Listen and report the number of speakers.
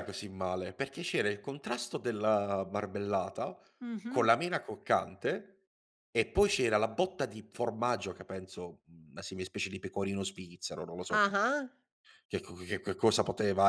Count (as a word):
two